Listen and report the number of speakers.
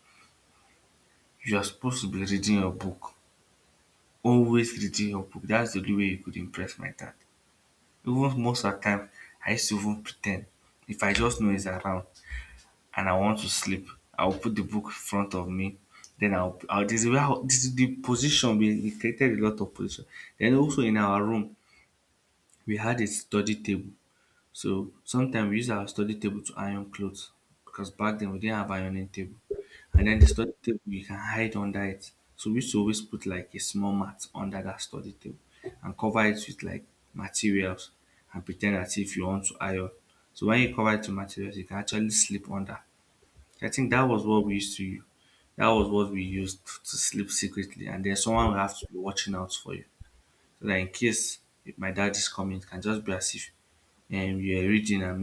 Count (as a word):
one